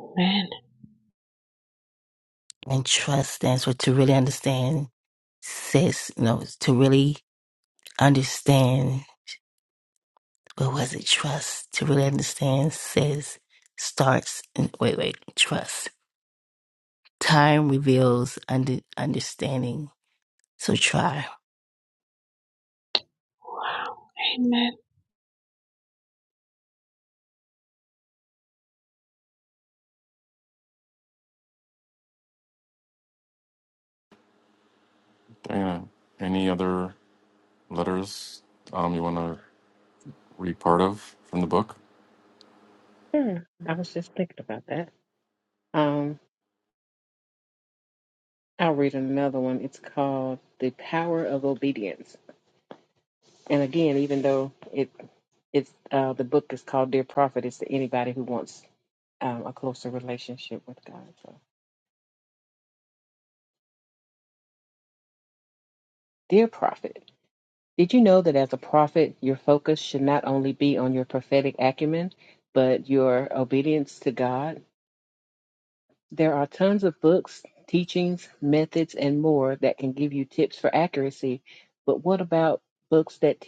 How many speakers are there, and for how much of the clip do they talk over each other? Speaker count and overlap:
4, no overlap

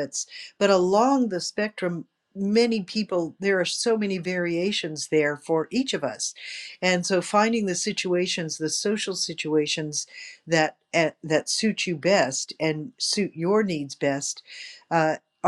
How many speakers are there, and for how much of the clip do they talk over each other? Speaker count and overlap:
1, no overlap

